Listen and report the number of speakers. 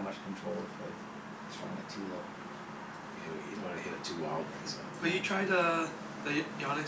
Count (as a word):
three